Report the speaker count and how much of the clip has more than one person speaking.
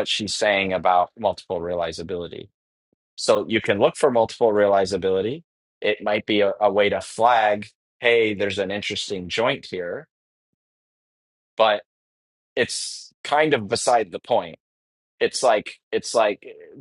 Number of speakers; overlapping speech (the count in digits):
1, no overlap